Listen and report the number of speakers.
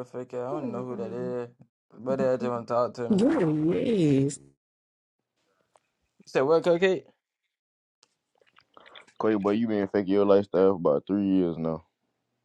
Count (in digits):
3